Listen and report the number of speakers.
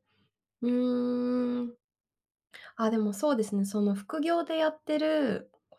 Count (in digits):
1